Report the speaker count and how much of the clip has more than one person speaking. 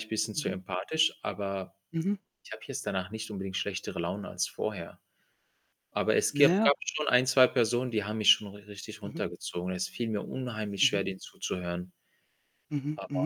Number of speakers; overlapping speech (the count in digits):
2, about 9%